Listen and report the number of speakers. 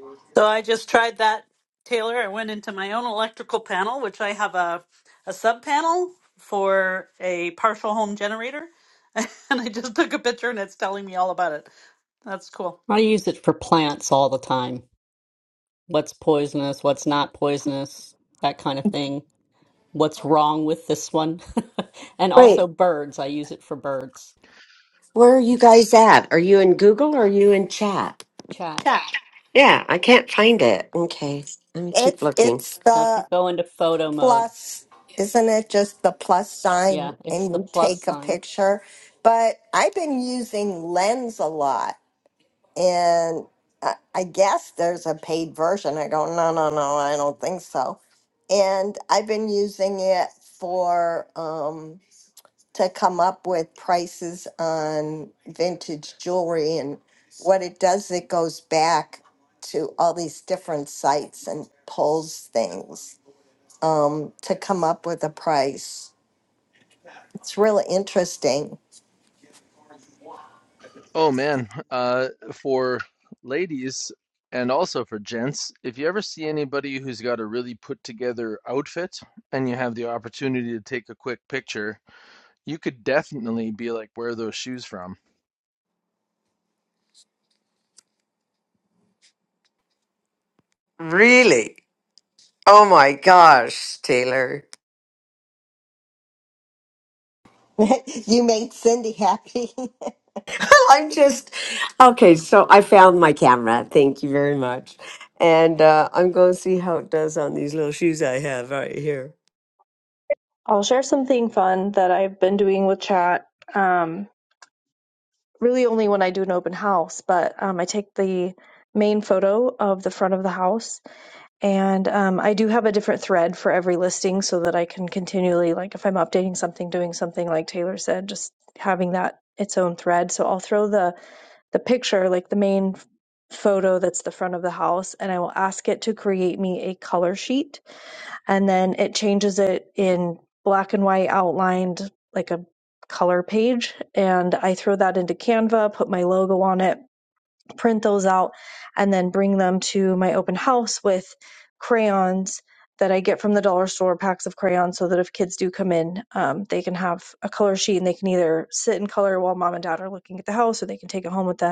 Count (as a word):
six